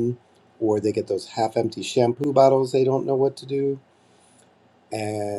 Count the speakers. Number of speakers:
1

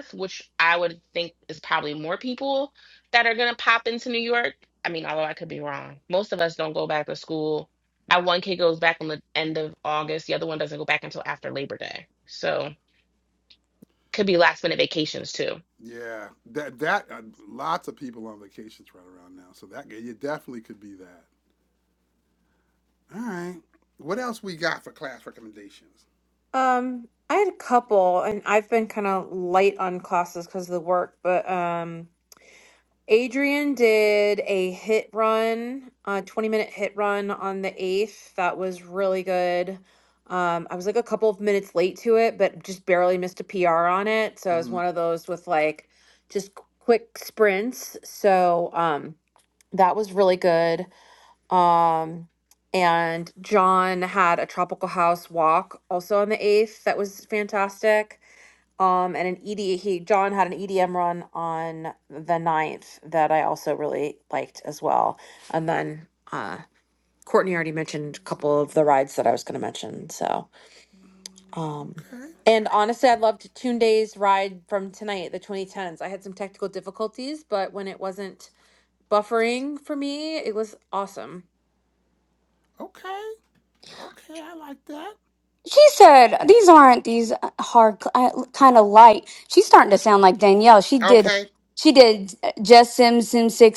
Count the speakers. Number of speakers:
4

